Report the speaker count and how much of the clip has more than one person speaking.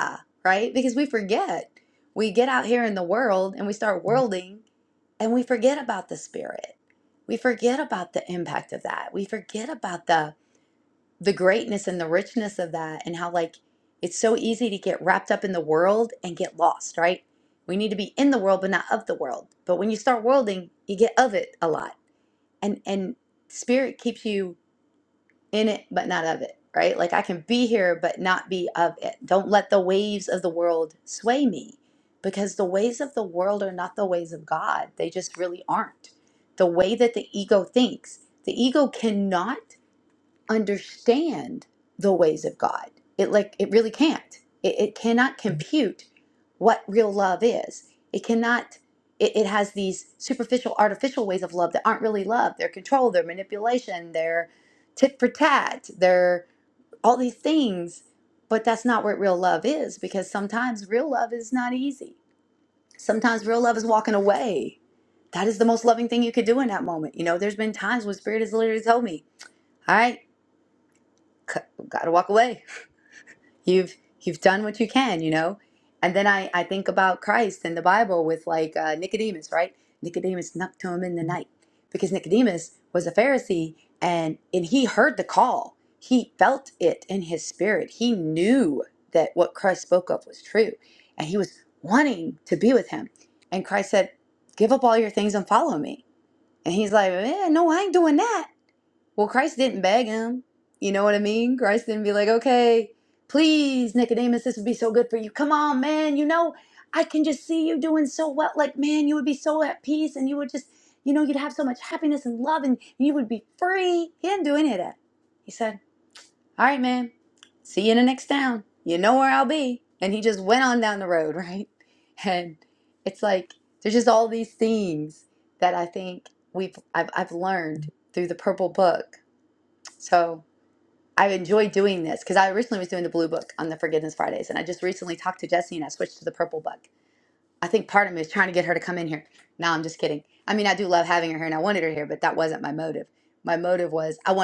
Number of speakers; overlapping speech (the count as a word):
one, no overlap